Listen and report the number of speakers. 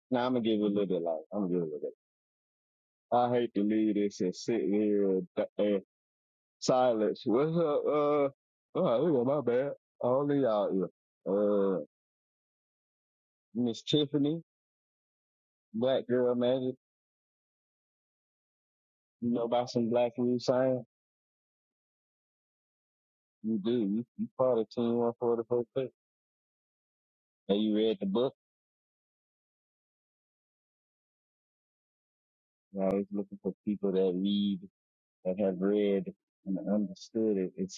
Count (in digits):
1